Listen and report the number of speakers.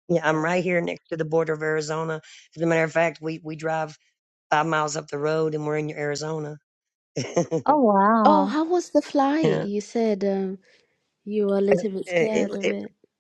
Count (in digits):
3